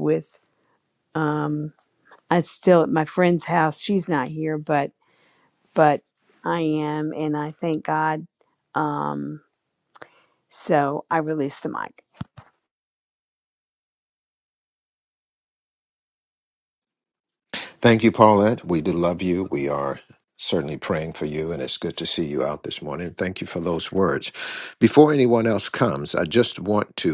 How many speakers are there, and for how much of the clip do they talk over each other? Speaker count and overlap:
2, no overlap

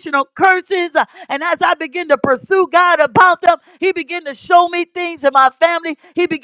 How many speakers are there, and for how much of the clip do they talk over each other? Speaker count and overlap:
1, no overlap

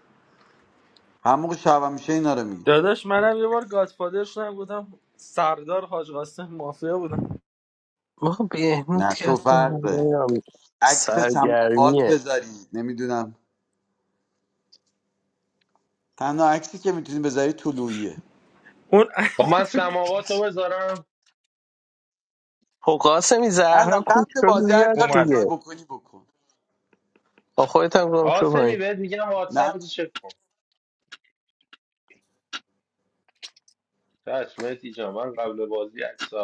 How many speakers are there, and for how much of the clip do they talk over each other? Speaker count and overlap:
4, about 13%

